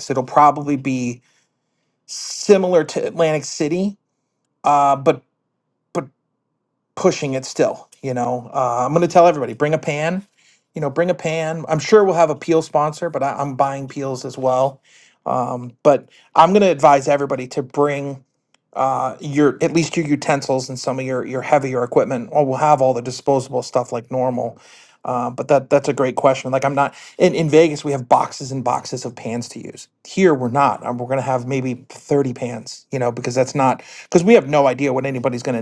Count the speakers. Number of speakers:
1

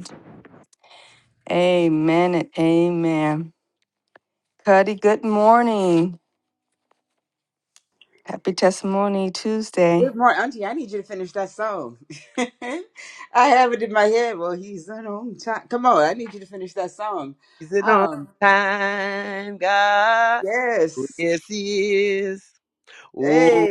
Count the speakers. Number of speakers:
3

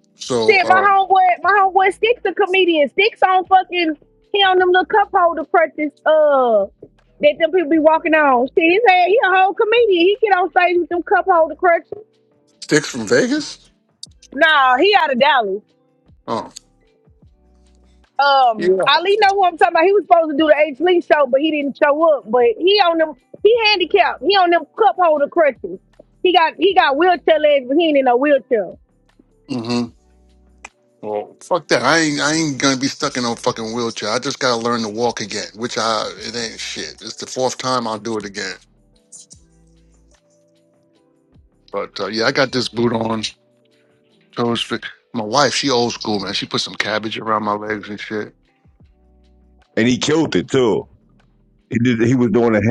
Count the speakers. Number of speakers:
3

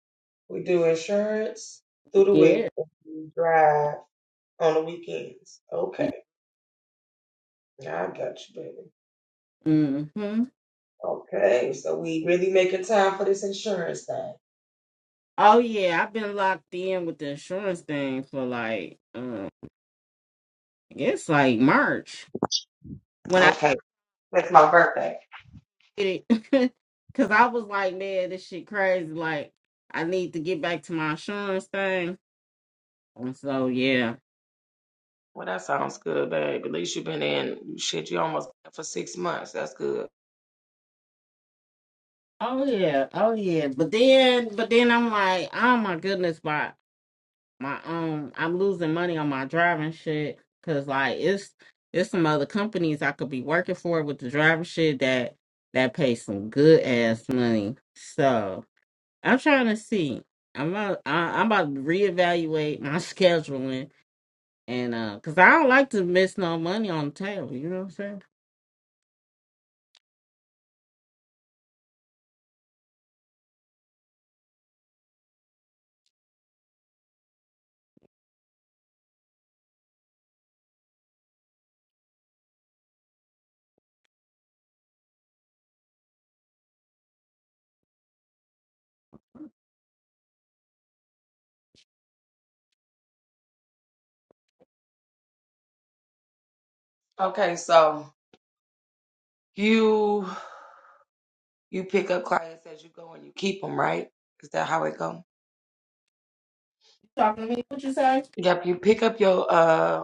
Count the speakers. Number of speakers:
2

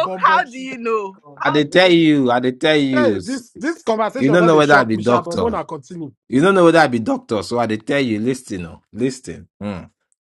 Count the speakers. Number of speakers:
3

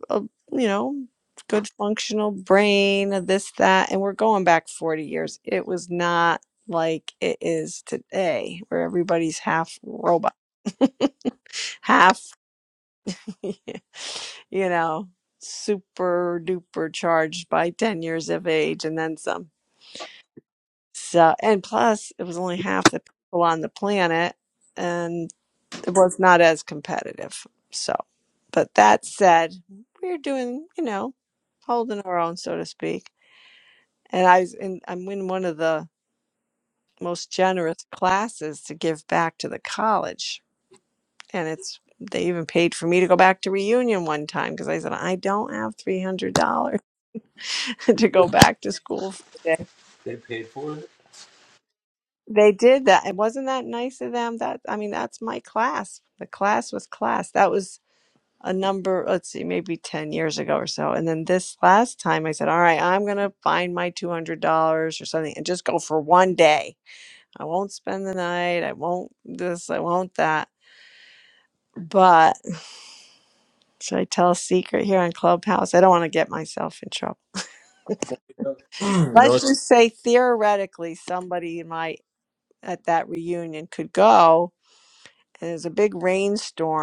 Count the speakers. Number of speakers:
2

